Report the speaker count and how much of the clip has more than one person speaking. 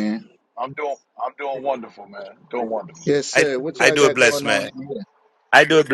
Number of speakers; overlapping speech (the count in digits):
3, about 23%